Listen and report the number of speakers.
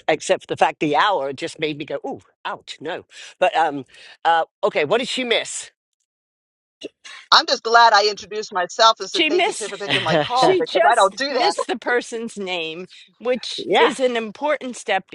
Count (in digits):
3